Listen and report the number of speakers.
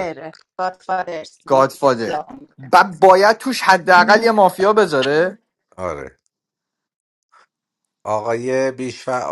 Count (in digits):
3